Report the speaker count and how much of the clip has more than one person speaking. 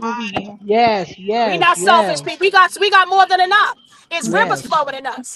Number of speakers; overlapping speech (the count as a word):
three, about 27%